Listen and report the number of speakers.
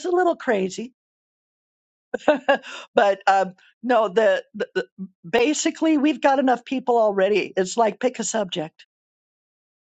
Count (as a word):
one